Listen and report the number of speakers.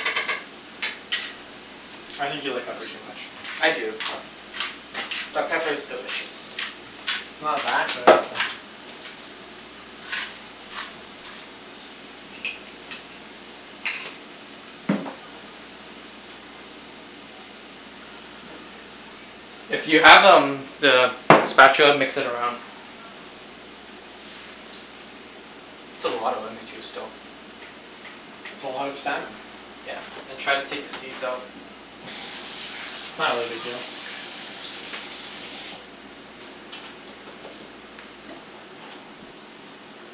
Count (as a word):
two